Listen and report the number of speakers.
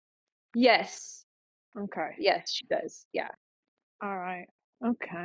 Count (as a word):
two